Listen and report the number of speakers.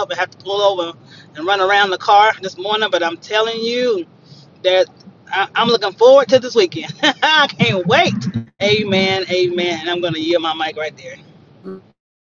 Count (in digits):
1